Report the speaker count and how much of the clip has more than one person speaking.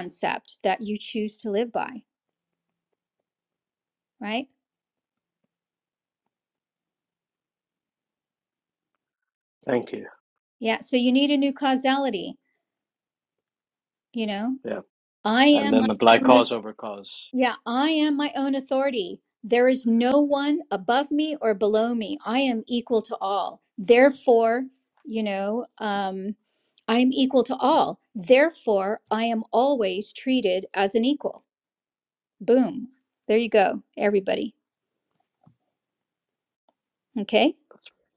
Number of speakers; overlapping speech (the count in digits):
2, about 3%